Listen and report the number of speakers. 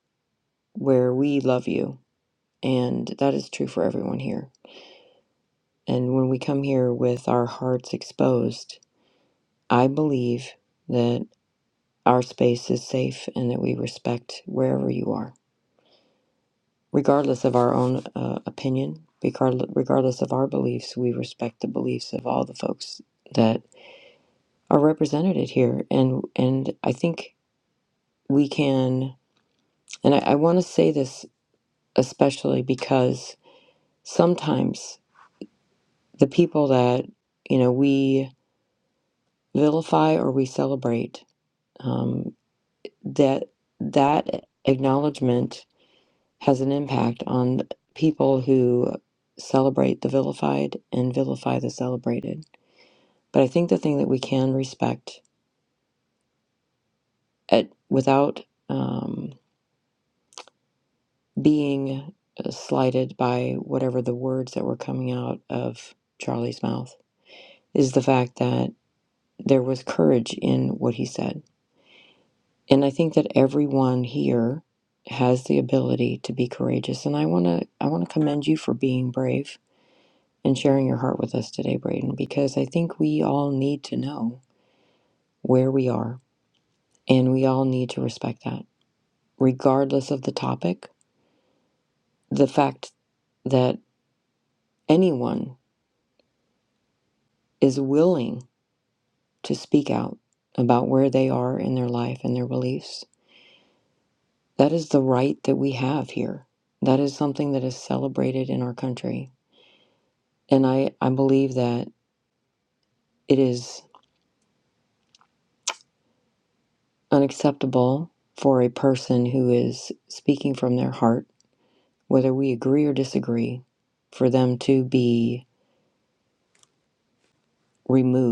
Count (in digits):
1